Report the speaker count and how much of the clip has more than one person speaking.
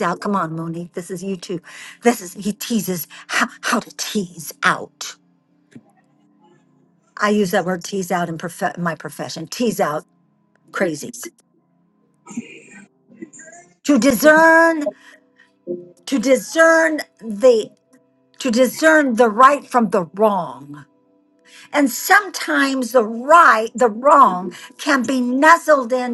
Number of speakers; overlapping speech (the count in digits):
1, no overlap